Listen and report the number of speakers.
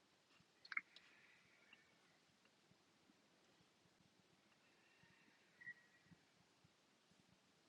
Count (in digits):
0